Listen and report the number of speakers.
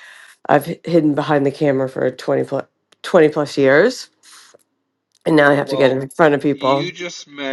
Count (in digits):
2